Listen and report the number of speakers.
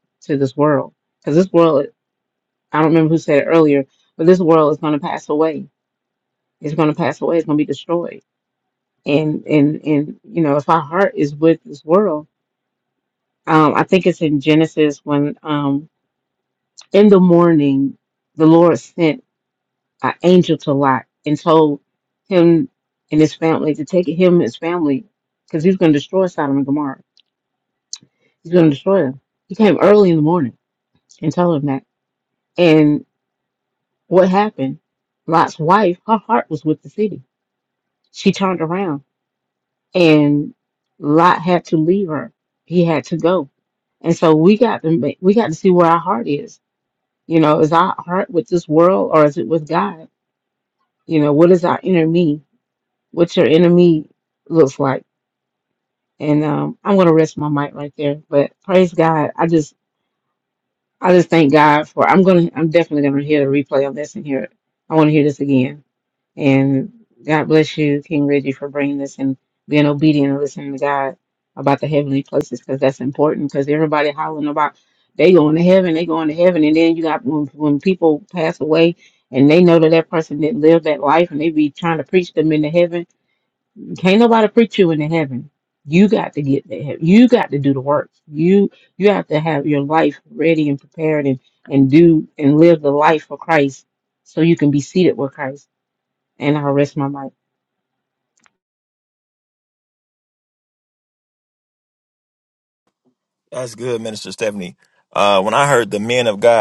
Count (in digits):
2